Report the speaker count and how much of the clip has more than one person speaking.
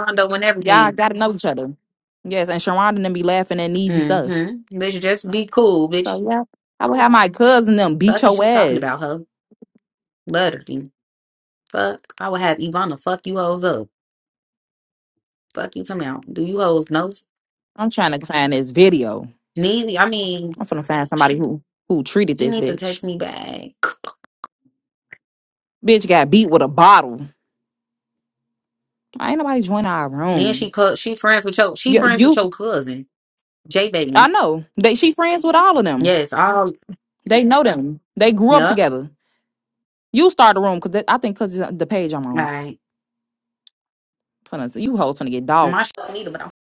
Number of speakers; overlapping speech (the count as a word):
two, about 9%